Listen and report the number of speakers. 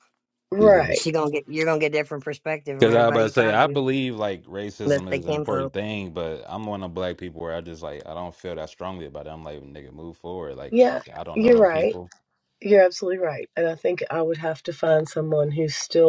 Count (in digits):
3